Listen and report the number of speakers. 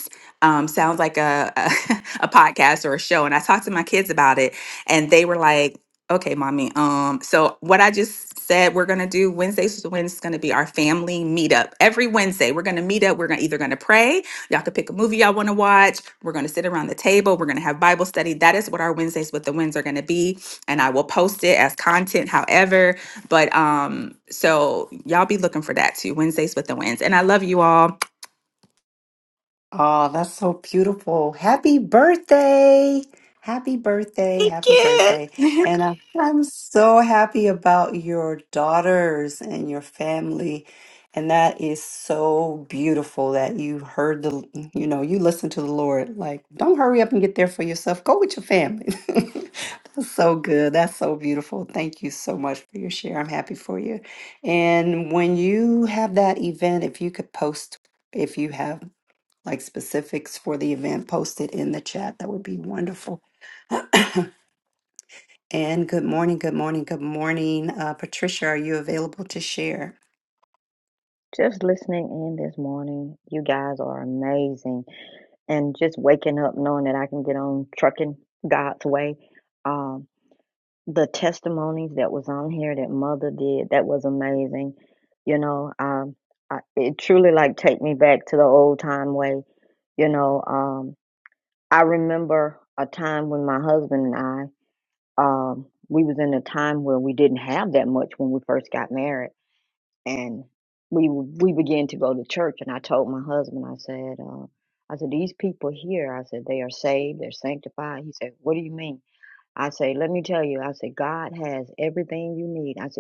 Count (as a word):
three